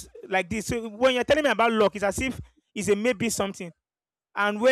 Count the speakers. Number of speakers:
one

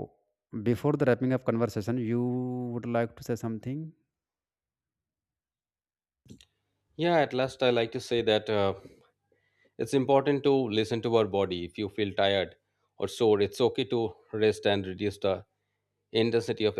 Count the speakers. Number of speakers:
two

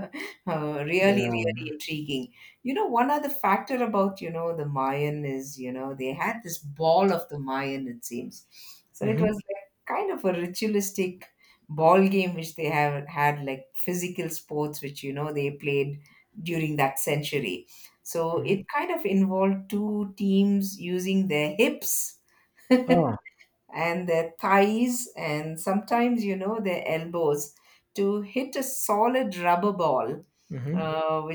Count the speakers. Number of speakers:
two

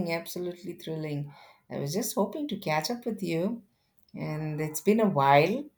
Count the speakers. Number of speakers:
one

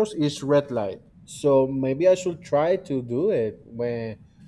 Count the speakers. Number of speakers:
one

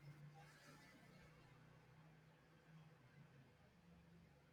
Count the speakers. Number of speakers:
zero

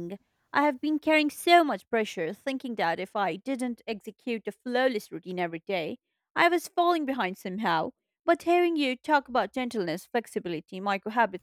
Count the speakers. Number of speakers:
one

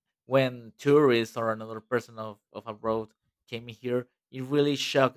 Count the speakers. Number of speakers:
one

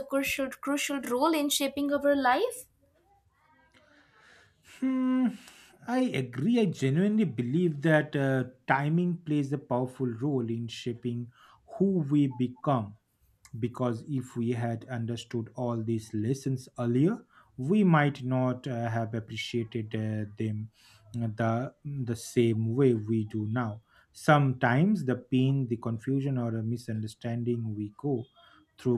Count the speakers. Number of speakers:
two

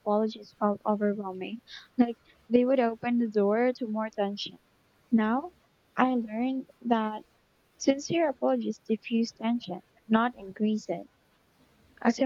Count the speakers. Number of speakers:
one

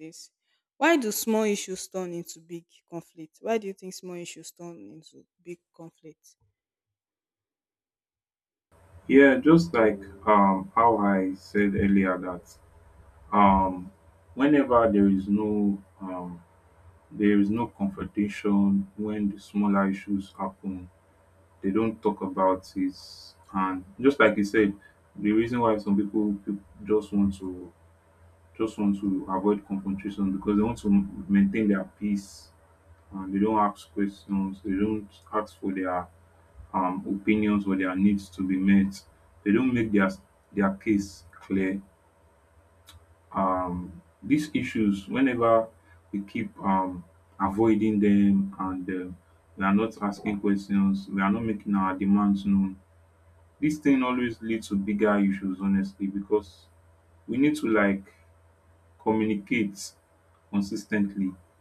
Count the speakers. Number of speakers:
two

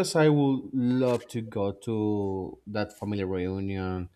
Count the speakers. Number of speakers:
one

